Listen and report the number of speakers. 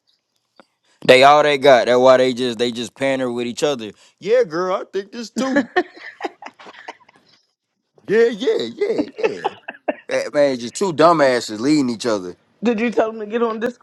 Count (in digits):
2